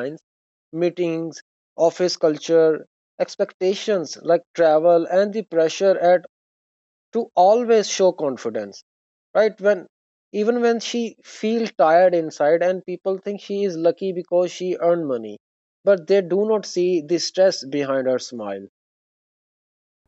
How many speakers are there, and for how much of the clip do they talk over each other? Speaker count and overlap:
one, no overlap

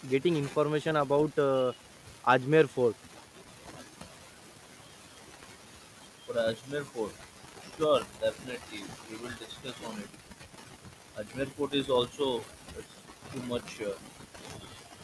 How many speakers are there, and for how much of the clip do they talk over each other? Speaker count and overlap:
two, no overlap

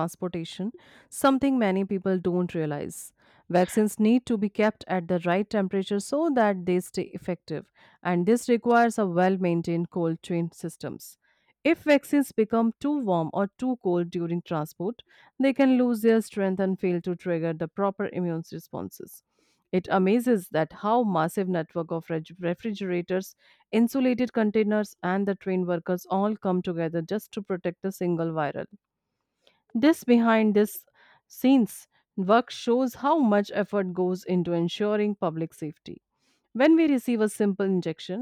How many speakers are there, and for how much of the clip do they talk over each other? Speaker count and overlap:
one, no overlap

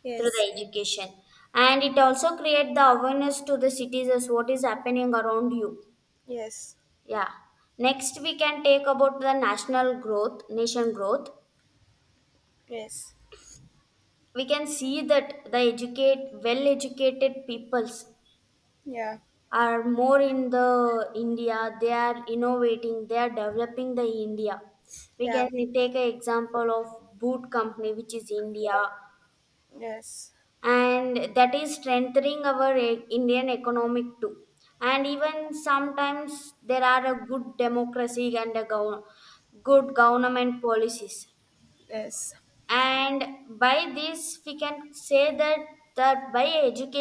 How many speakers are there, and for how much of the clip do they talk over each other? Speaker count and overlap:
two, about 1%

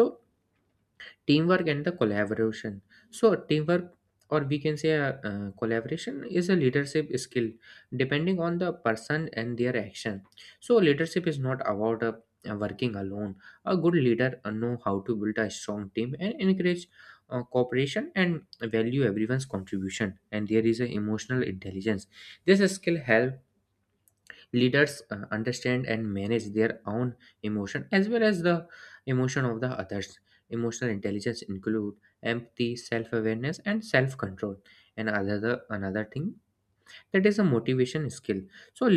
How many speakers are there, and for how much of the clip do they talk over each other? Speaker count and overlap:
one, no overlap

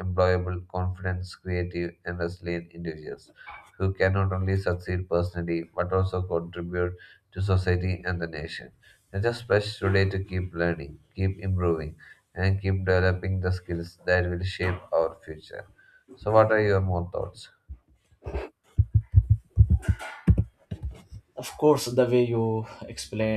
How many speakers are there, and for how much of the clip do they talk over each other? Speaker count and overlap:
two, no overlap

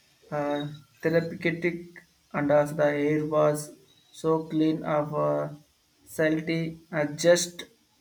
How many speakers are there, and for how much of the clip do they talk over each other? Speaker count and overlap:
one, no overlap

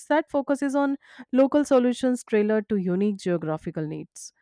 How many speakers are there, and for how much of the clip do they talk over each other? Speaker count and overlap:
one, no overlap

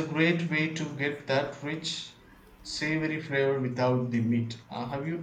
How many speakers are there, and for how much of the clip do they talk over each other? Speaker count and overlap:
one, no overlap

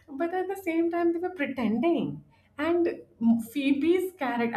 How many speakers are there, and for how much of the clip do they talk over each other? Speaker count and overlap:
one, no overlap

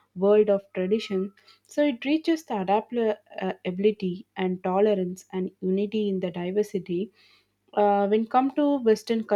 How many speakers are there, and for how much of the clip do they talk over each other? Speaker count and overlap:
one, no overlap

